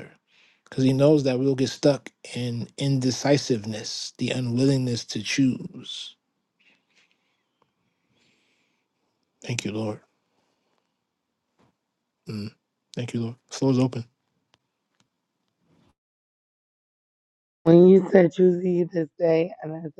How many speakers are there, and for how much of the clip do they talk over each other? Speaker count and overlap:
2, no overlap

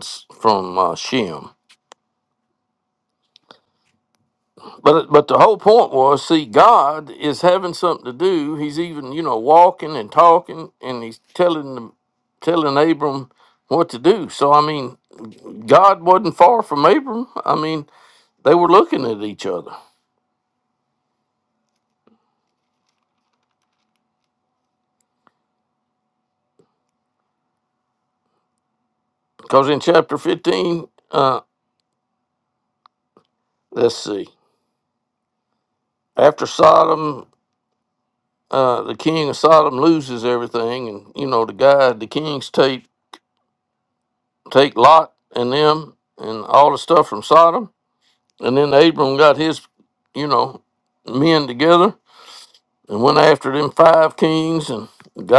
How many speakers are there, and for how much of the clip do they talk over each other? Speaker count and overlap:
1, no overlap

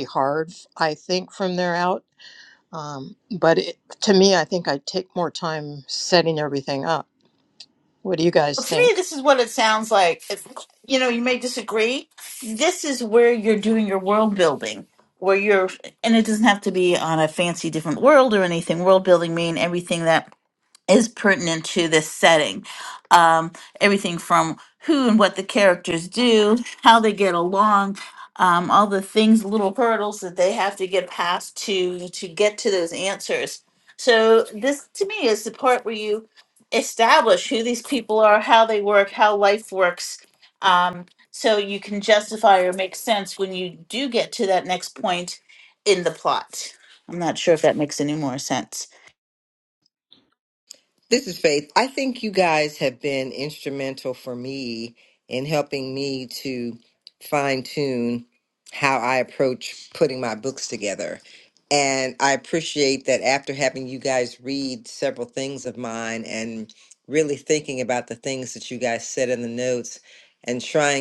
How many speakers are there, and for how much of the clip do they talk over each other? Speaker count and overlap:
3, about 1%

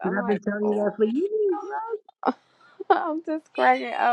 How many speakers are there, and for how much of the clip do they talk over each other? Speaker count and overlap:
2, about 22%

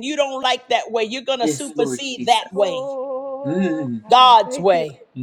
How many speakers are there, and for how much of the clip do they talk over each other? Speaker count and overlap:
3, about 41%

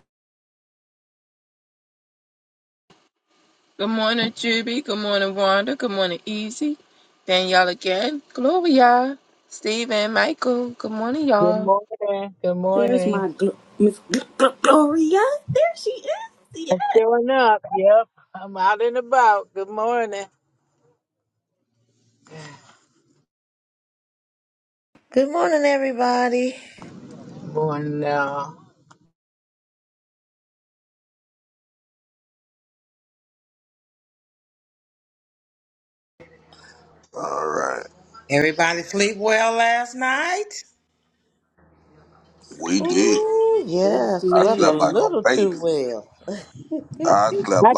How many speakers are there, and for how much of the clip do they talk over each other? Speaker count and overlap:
6, about 7%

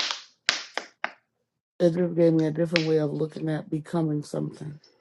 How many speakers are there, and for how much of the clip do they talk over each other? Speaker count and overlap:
1, no overlap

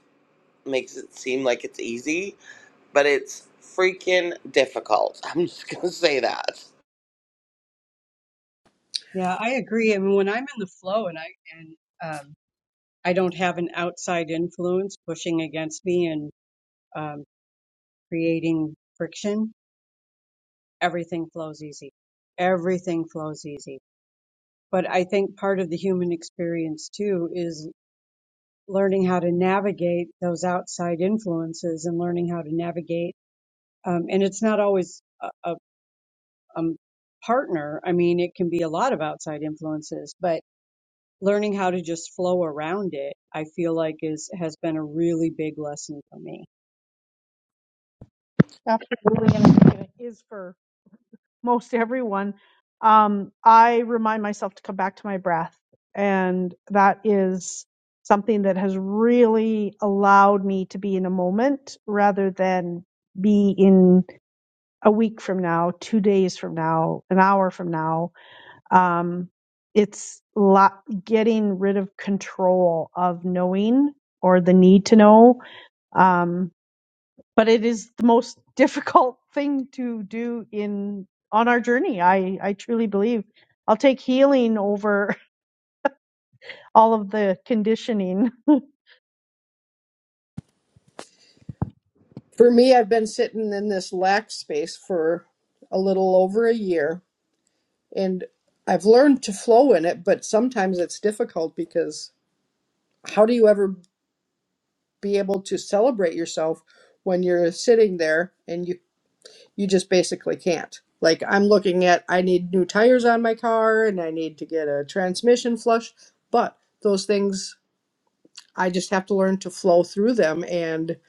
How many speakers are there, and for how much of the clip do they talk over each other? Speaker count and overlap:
4, no overlap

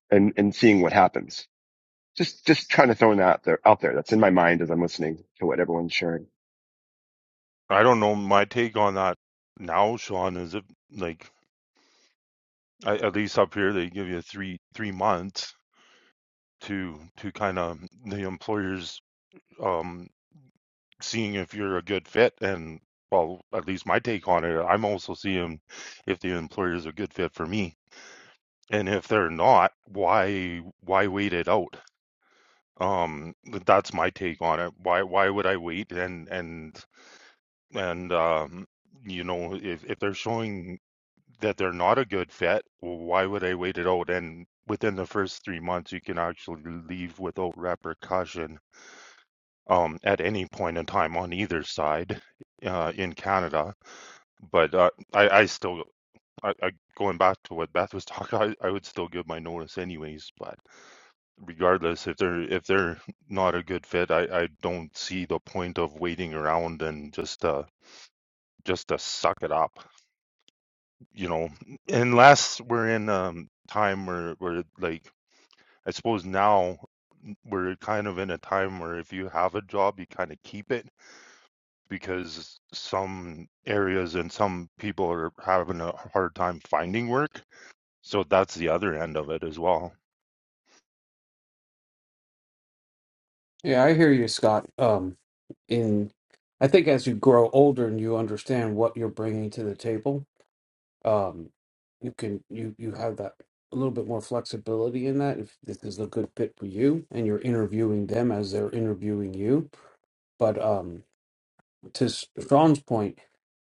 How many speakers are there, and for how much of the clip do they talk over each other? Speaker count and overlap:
3, no overlap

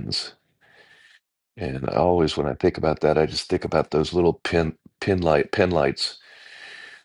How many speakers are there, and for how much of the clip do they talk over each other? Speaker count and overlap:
1, no overlap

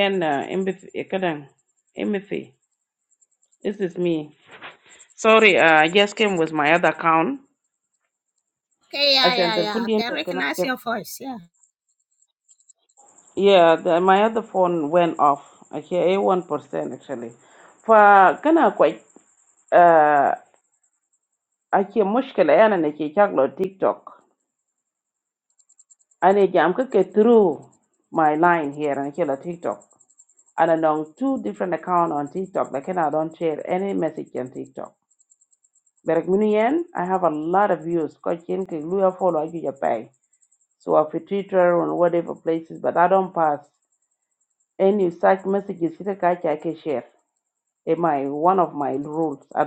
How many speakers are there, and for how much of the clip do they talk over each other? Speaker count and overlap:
2, about 3%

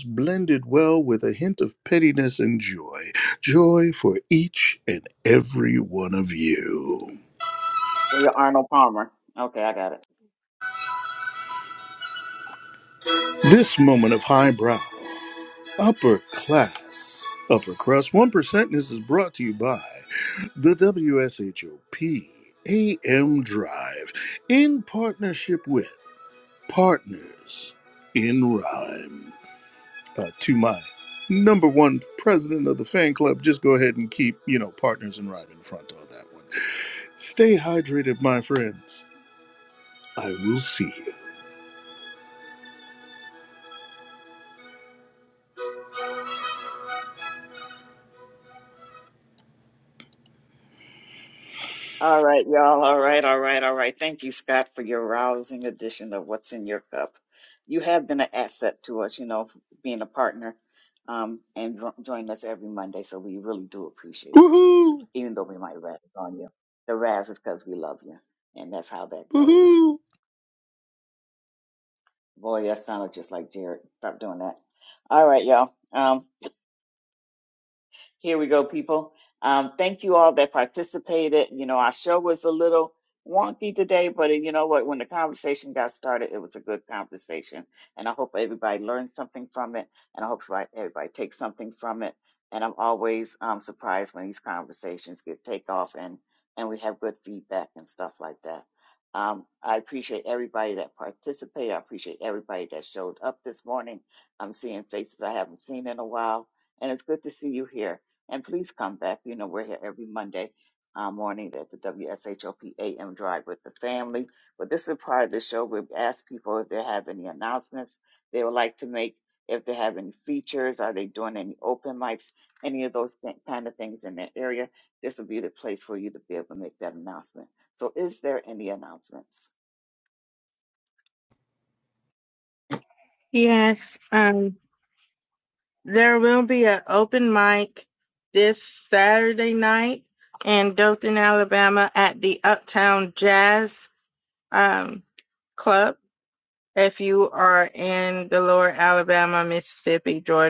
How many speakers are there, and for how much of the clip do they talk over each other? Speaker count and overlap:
3, under 1%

